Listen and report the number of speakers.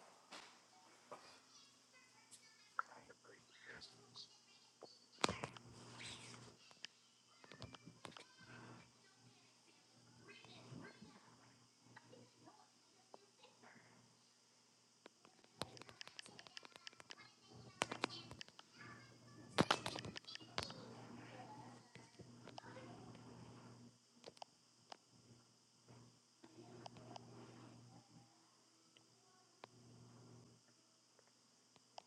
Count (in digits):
0